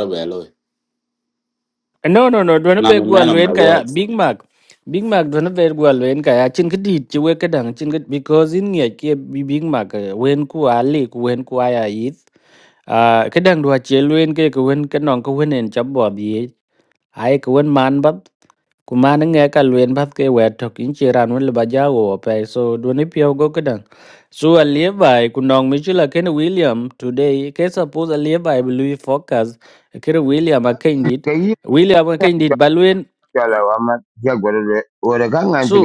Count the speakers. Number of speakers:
3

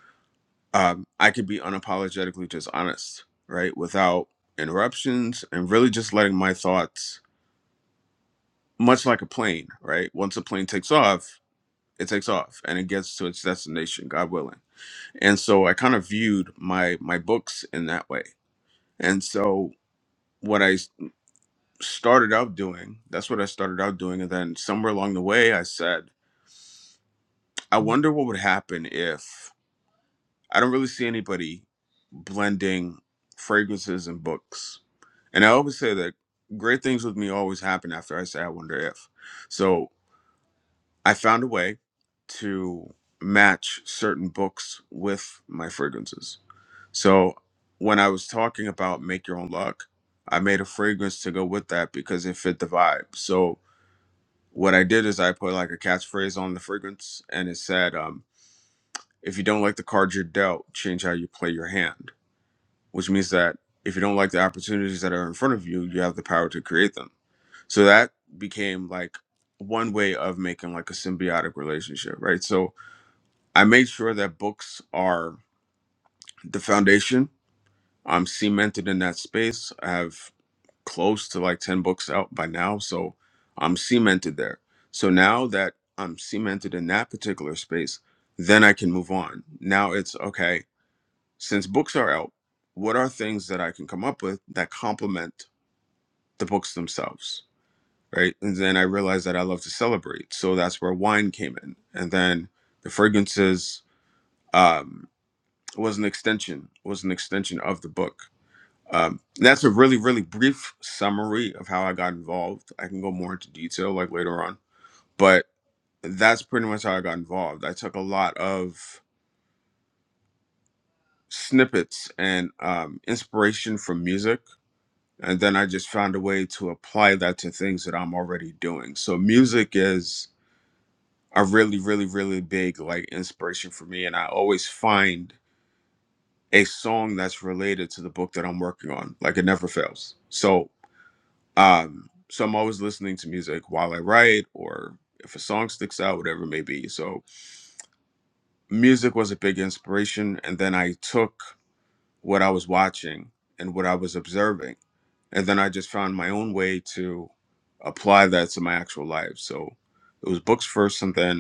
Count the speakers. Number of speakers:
1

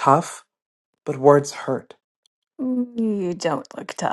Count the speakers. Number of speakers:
2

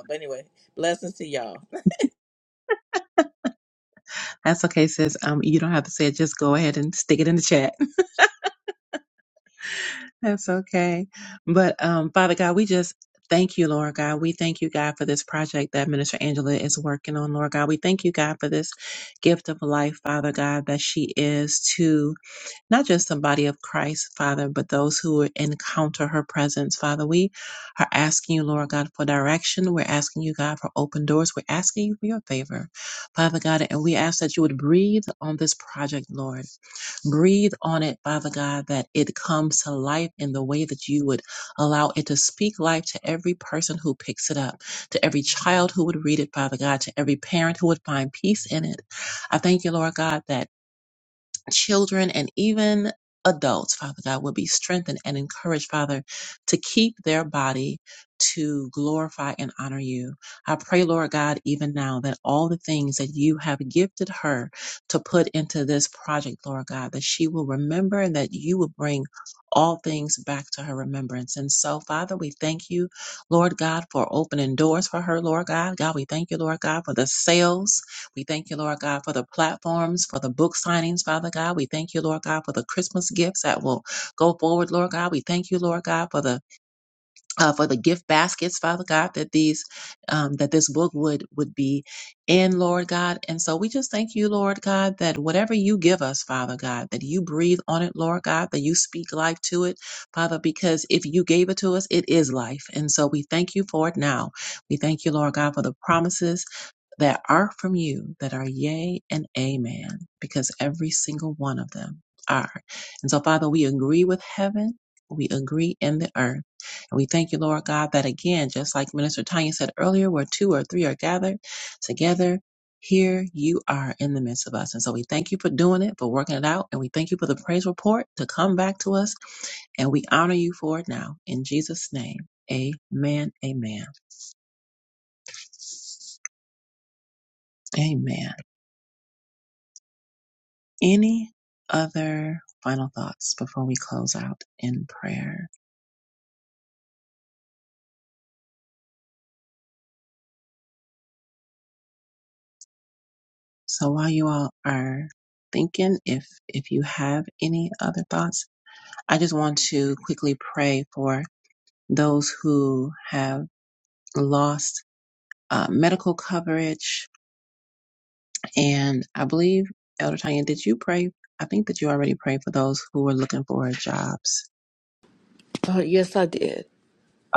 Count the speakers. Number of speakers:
3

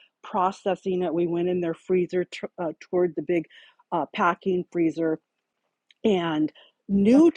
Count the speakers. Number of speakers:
1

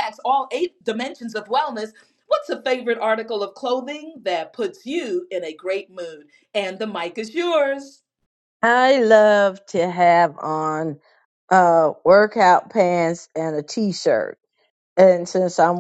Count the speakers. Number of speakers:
2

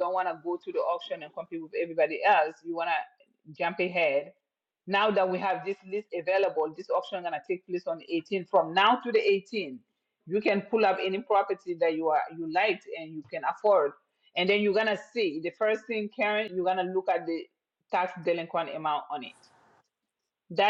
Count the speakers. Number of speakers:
1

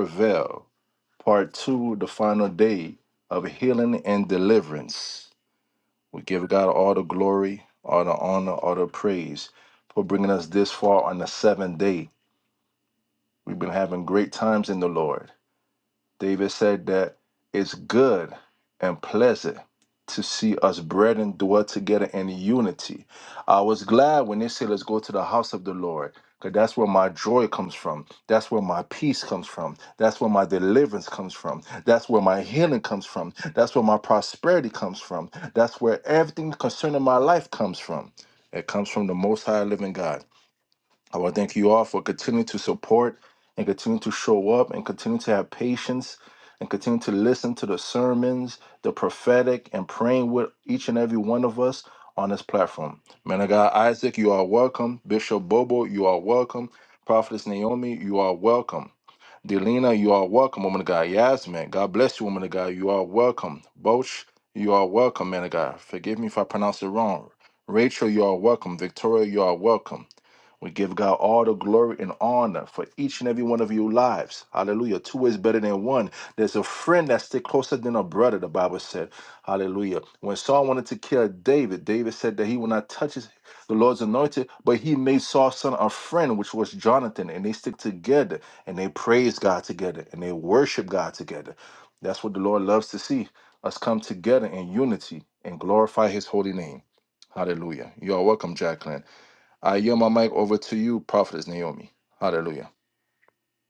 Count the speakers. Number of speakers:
1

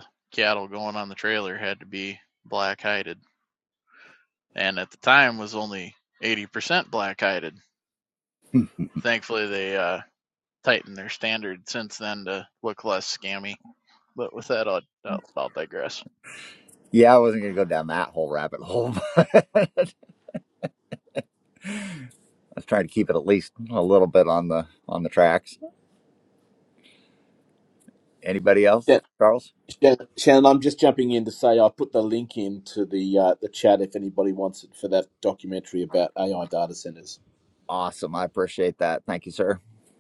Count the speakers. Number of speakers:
3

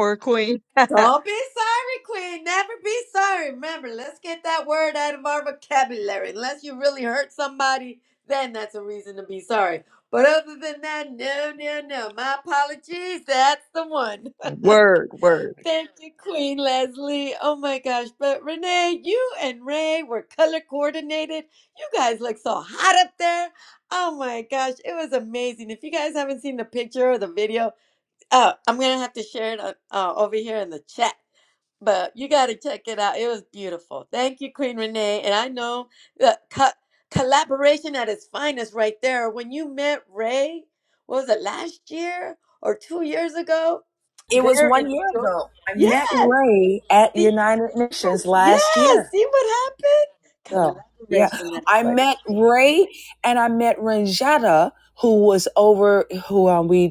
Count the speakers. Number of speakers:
3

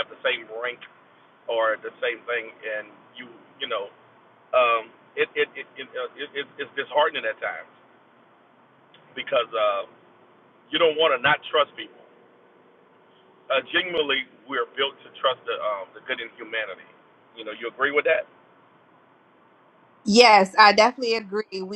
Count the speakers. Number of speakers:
2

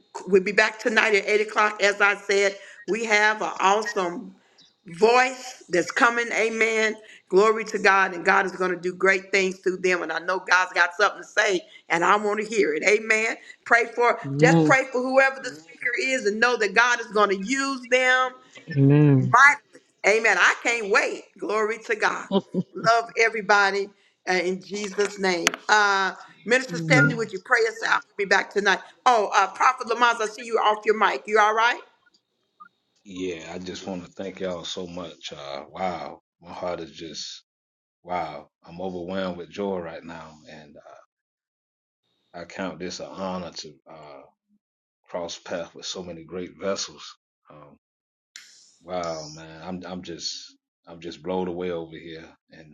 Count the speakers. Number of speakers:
3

